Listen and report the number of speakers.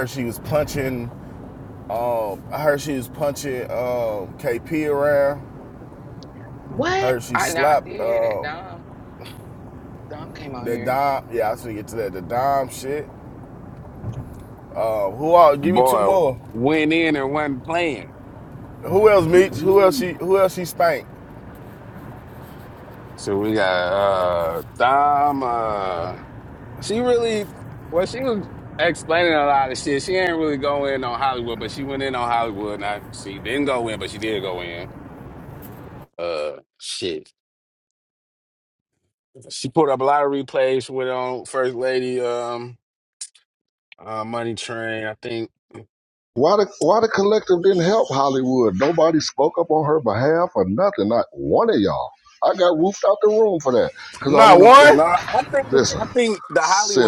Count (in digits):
4